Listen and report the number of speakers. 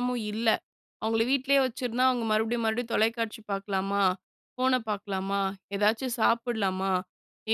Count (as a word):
one